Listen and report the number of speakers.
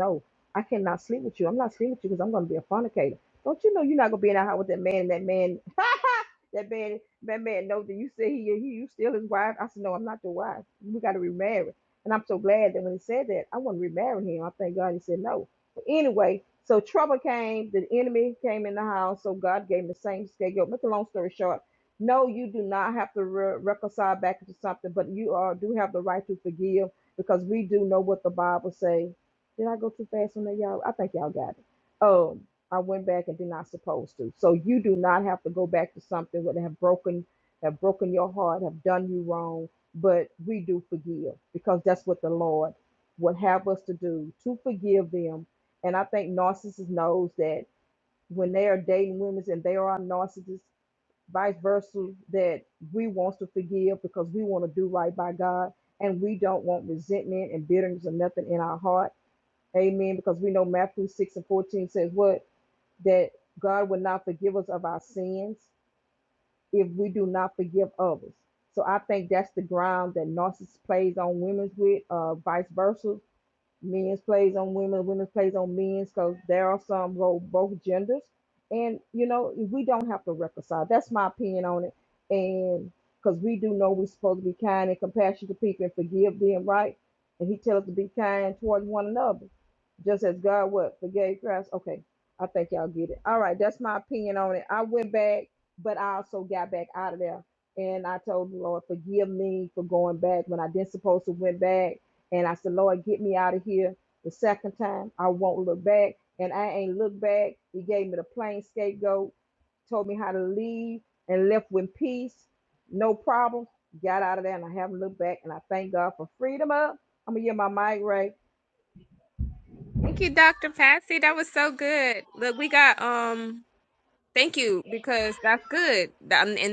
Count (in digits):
2